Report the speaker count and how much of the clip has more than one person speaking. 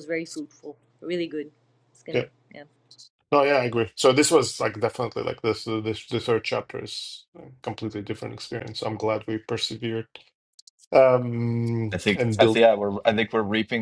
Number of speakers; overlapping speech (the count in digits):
3, about 6%